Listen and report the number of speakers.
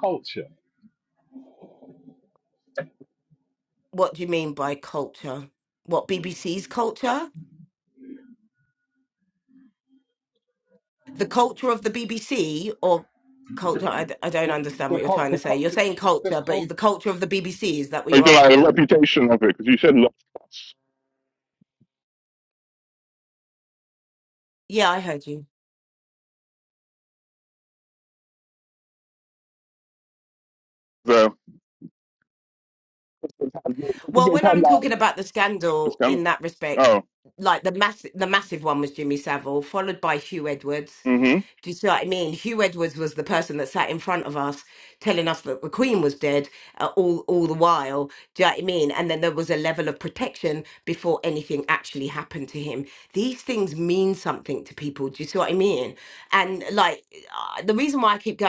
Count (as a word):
three